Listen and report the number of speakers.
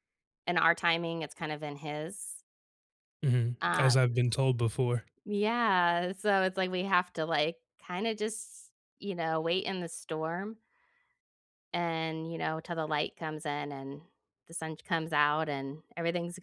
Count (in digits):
2